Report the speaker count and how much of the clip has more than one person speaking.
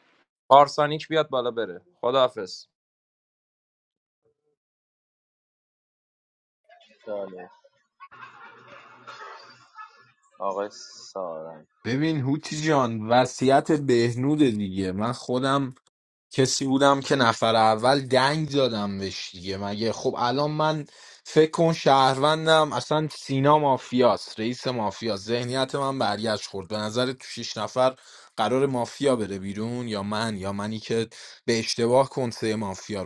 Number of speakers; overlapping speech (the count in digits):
3, no overlap